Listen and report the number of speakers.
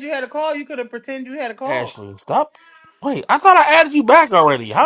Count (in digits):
2